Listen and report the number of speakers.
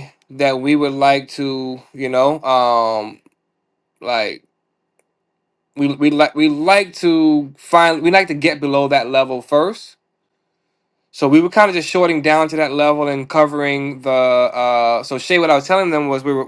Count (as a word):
one